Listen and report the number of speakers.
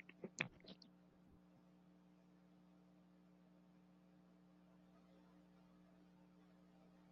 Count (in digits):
0